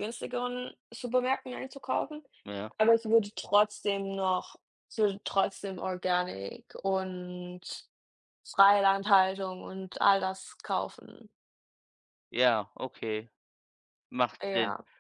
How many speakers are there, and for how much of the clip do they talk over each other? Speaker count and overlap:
2, about 2%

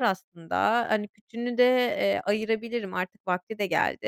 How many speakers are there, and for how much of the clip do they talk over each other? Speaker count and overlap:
1, no overlap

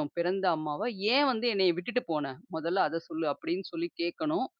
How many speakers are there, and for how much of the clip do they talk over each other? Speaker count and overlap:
1, no overlap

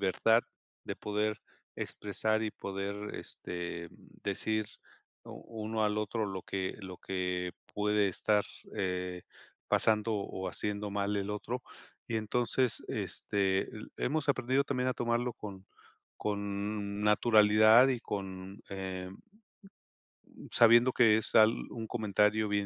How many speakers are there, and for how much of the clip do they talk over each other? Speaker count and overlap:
1, no overlap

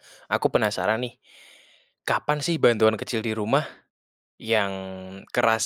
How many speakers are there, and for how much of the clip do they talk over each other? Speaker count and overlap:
1, no overlap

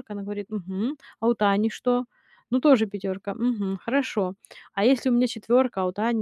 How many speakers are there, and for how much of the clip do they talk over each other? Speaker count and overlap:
1, no overlap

